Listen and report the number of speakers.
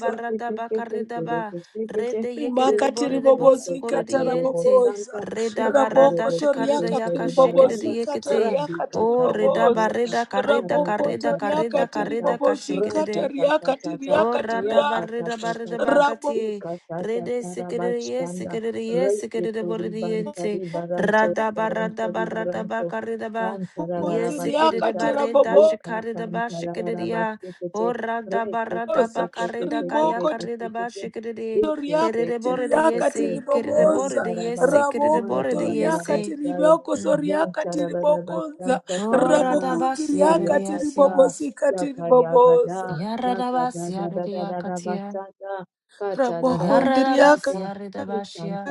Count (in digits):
3